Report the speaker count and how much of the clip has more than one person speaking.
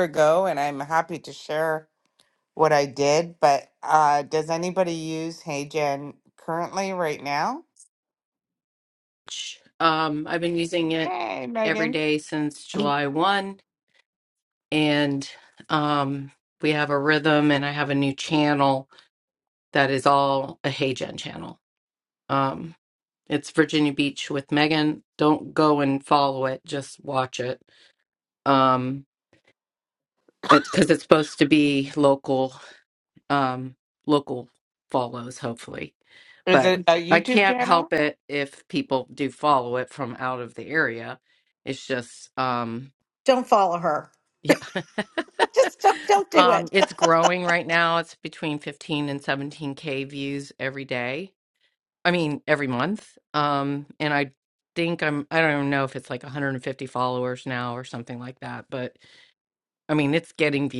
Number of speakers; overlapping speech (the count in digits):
3, about 3%